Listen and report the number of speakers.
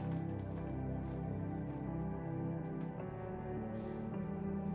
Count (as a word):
zero